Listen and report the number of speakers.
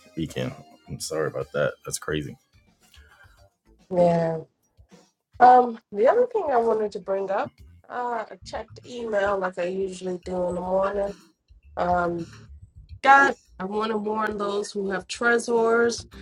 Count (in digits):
2